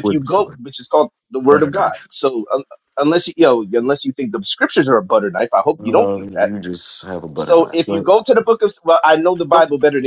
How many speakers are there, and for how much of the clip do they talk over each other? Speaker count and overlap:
two, about 24%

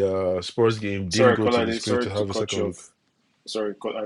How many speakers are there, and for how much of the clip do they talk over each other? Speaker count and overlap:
two, about 40%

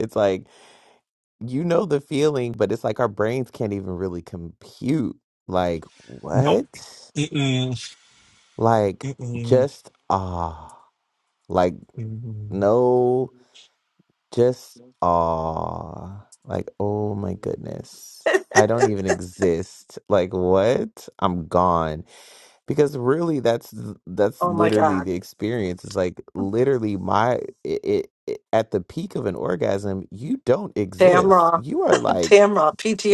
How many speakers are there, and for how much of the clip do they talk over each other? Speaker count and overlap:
three, about 6%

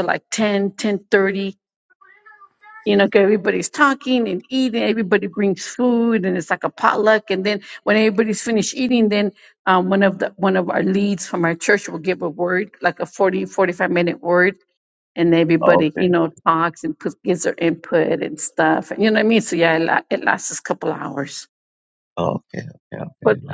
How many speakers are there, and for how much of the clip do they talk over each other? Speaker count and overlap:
two, about 3%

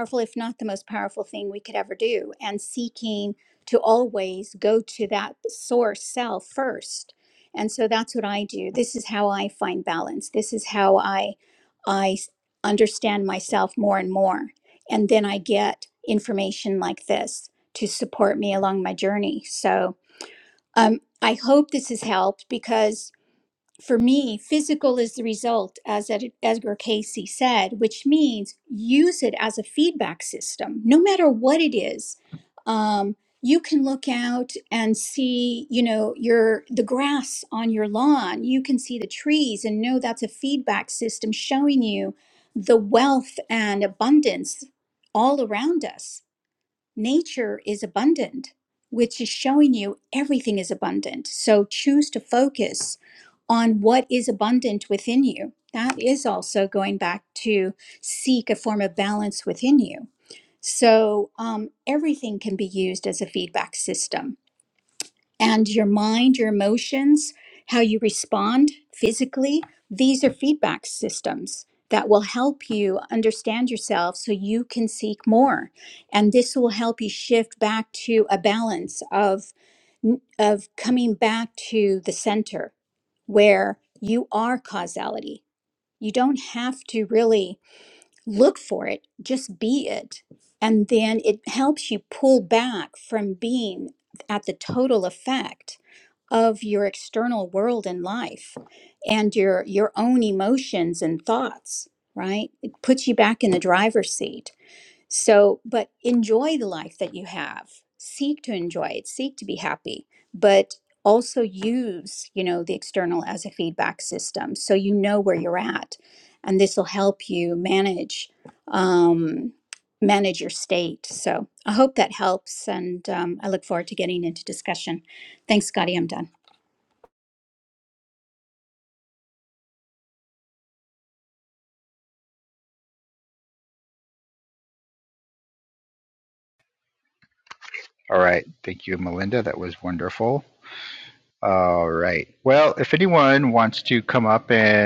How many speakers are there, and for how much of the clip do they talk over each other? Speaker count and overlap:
two, no overlap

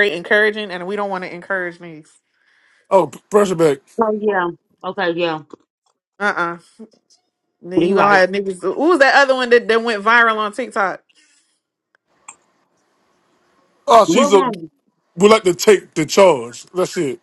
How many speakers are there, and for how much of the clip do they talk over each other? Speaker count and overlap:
three, about 5%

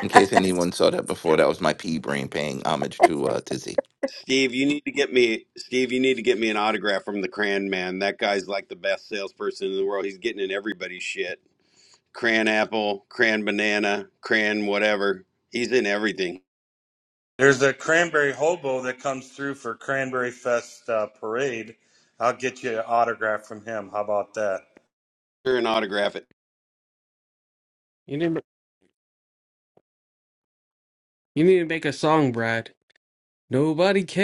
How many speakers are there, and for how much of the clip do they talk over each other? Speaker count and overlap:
four, no overlap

